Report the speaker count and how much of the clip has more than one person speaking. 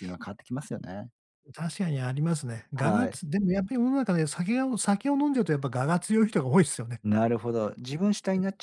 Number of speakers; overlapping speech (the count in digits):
2, about 5%